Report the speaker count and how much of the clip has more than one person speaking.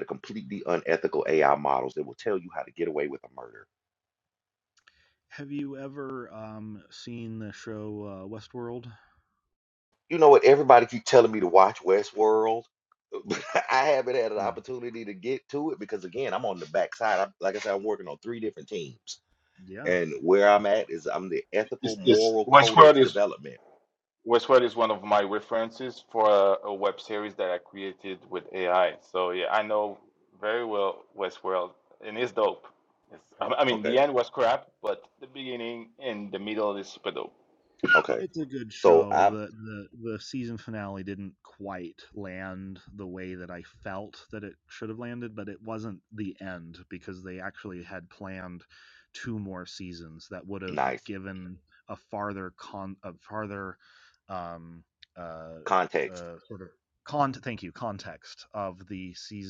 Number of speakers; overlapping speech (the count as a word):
three, about 5%